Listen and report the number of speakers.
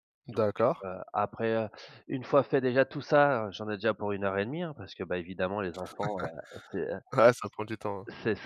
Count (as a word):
two